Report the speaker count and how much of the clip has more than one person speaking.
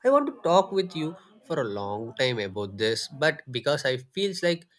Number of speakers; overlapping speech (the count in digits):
1, no overlap